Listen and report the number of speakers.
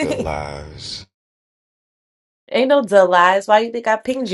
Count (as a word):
two